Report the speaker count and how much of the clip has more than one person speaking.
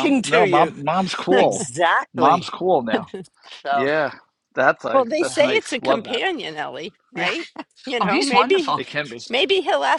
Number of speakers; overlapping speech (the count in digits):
3, about 35%